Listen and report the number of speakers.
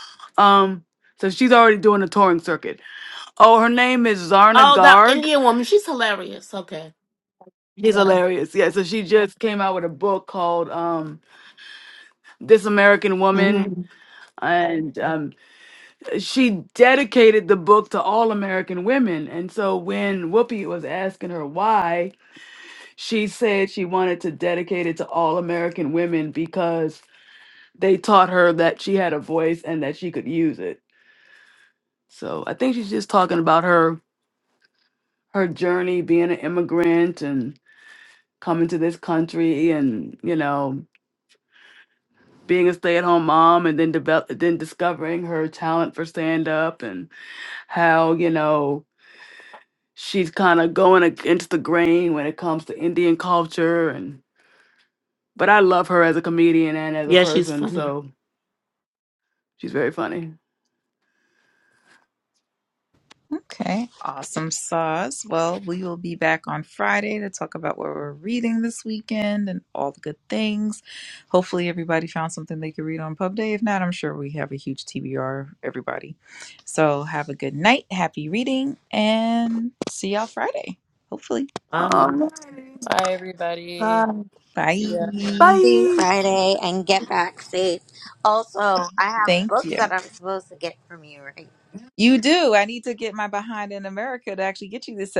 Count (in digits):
5